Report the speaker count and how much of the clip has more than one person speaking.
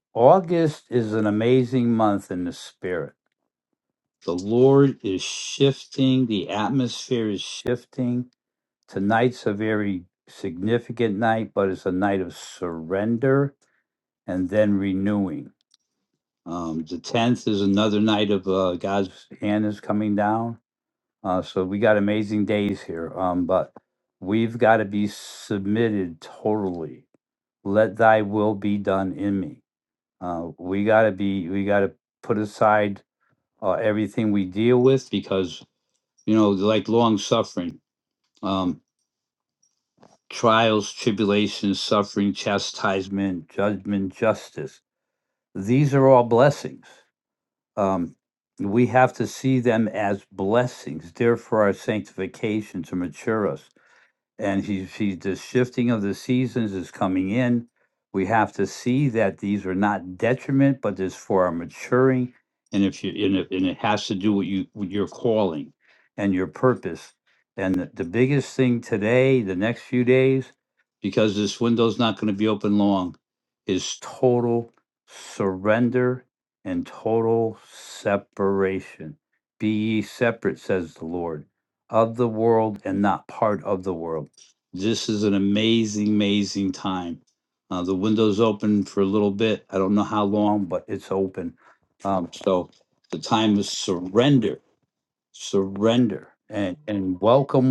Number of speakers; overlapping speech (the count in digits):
1, no overlap